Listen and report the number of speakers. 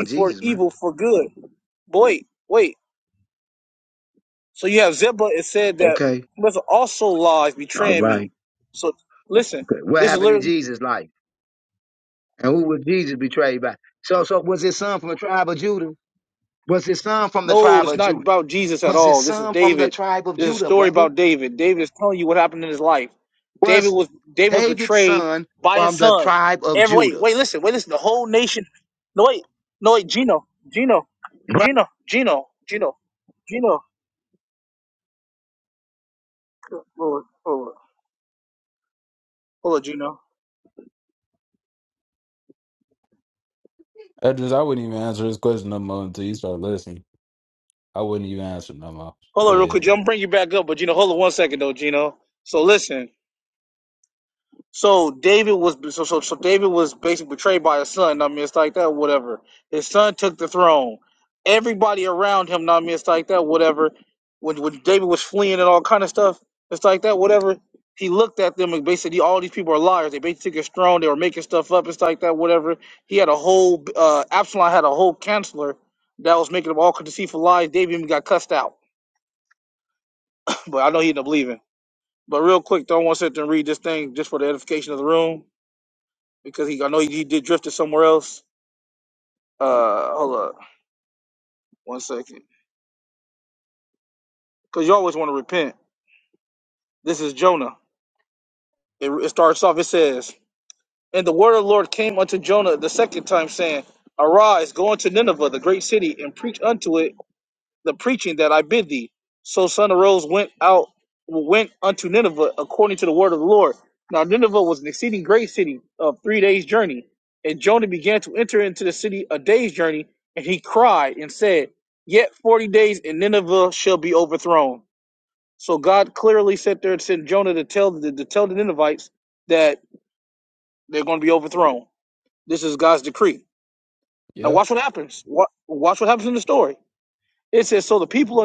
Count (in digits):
3